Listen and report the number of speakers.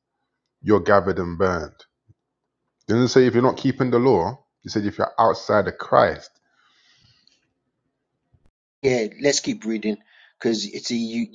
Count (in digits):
2